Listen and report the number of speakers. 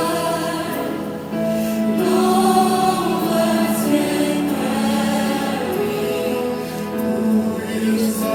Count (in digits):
0